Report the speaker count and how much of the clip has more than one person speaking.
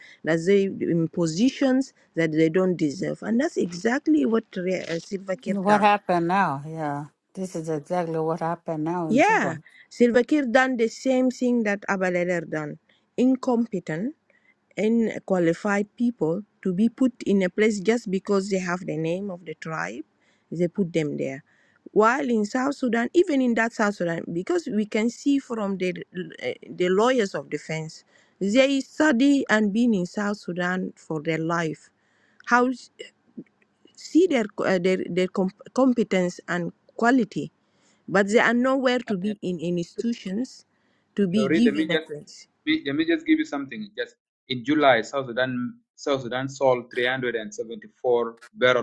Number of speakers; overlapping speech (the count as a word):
three, about 3%